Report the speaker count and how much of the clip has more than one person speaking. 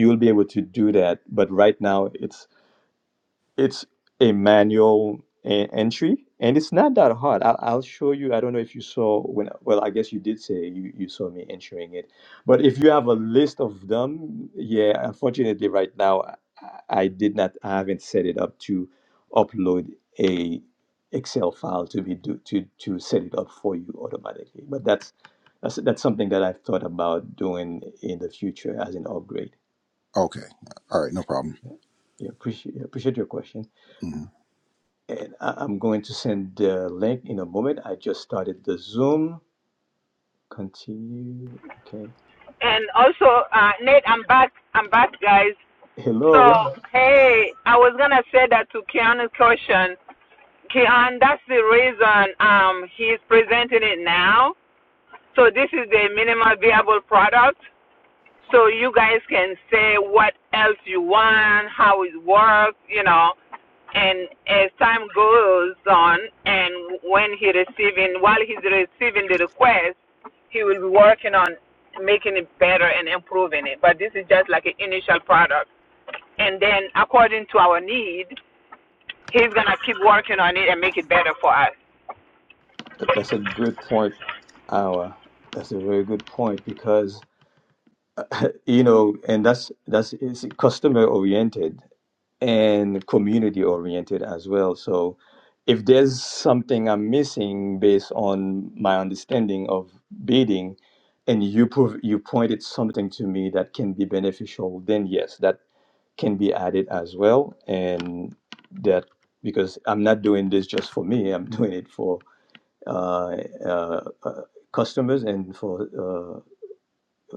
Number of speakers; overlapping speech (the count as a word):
three, under 1%